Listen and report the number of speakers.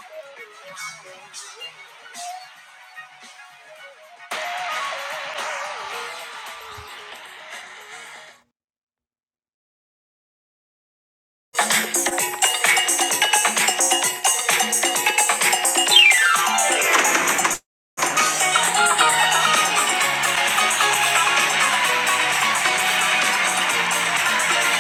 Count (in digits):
0